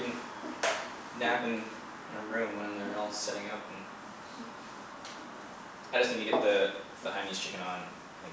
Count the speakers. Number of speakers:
one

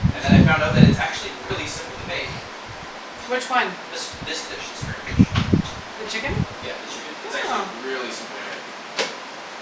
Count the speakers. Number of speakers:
two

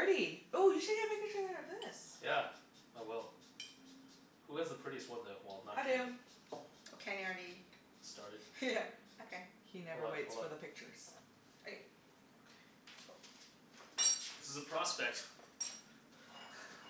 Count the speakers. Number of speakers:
three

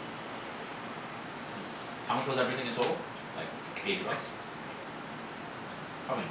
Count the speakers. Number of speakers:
one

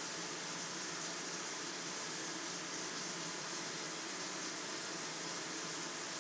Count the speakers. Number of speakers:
zero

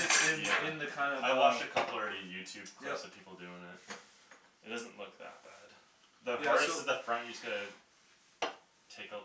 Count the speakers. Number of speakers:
two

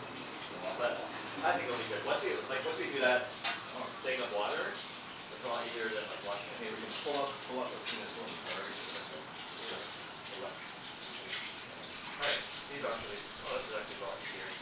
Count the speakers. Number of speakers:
two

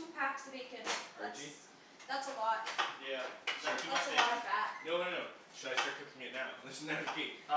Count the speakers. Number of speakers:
three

